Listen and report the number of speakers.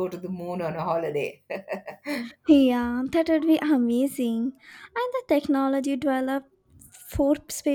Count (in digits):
2